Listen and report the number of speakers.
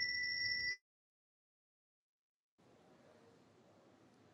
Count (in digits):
0